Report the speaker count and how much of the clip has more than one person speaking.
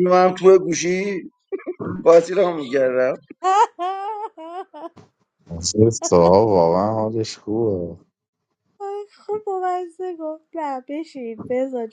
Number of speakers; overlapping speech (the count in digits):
3, no overlap